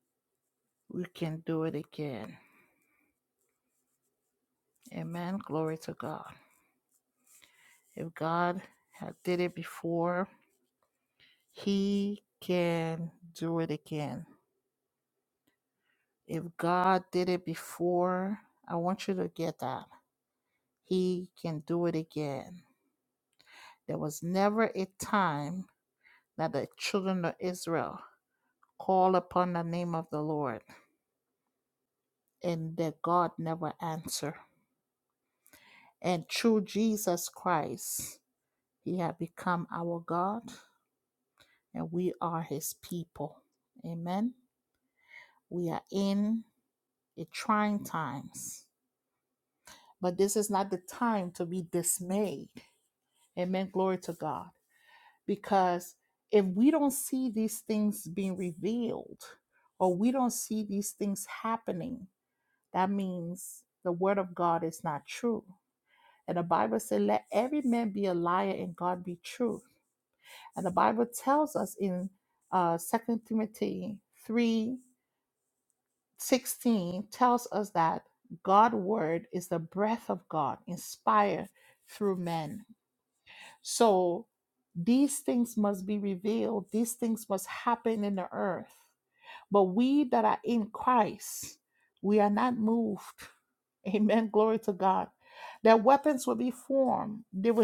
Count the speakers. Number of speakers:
1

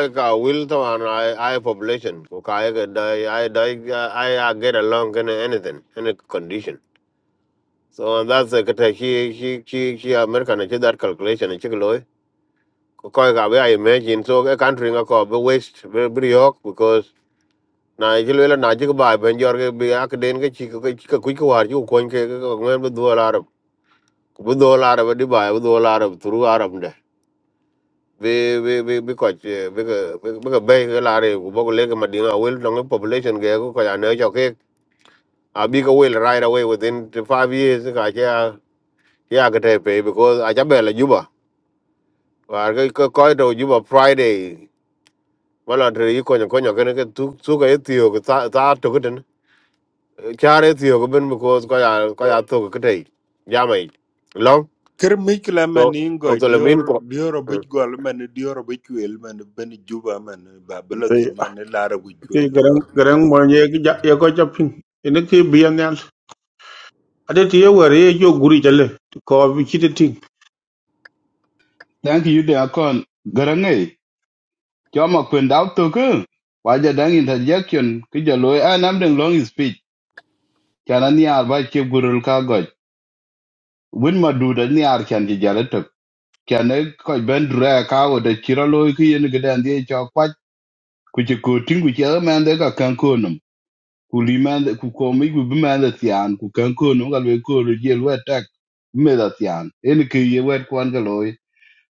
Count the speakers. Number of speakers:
4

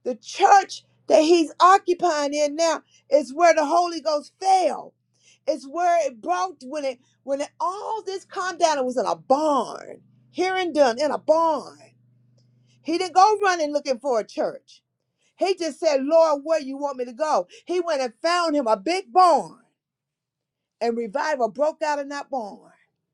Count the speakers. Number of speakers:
1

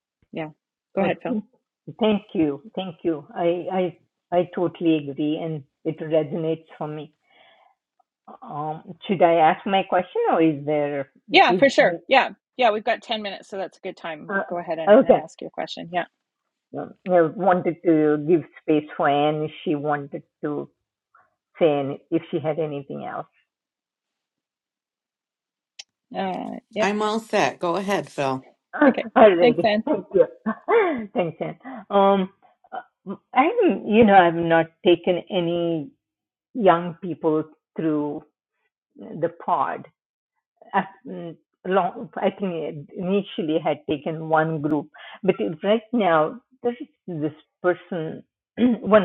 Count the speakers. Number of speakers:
3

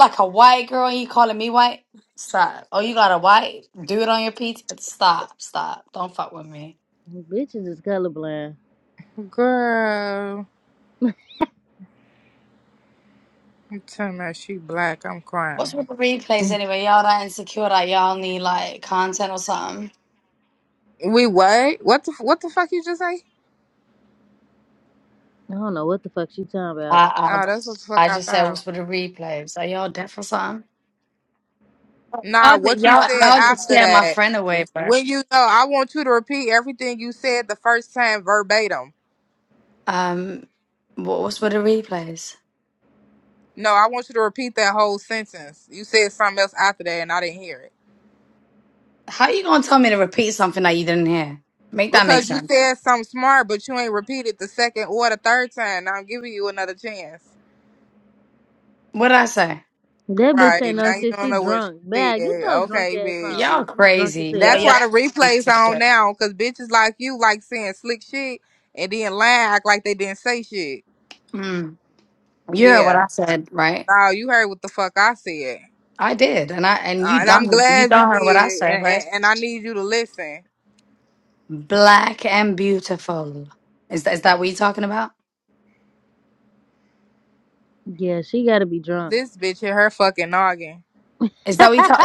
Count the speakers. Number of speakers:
3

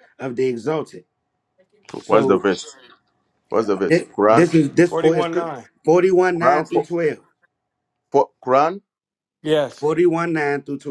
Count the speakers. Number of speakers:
3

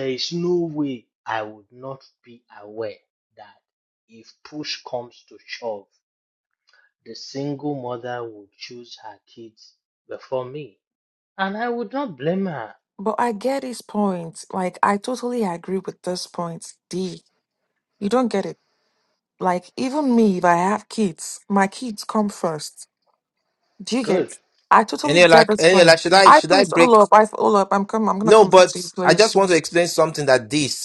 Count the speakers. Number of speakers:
3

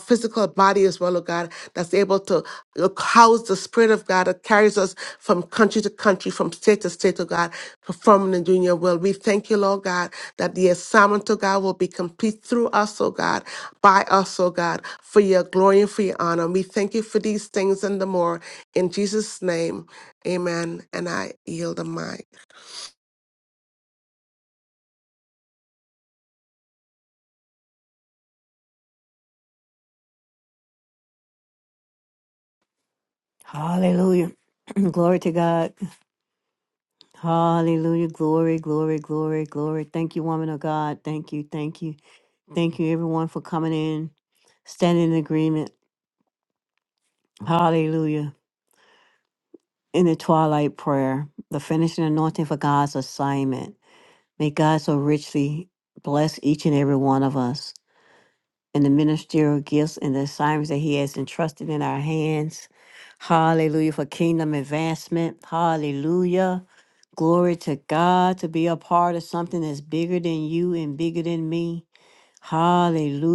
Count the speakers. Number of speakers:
2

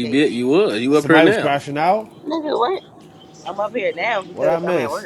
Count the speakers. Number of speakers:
3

